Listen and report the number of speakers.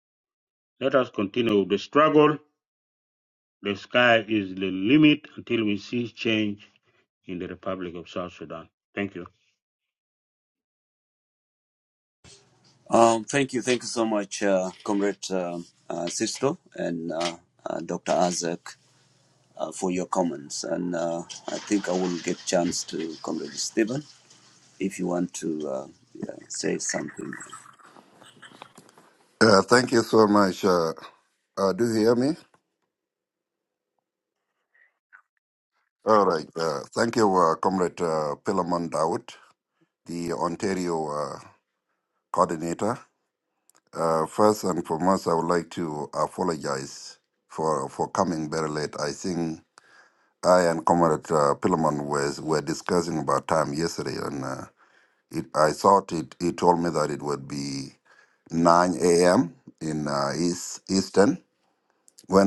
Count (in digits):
3